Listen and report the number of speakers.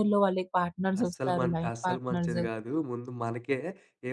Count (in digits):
2